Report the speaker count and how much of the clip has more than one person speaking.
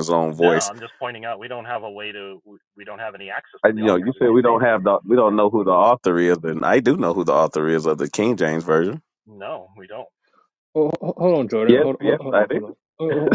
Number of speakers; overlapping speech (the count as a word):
three, about 20%